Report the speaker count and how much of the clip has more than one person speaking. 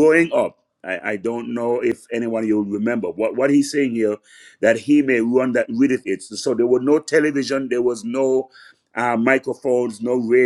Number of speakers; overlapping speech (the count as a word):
one, no overlap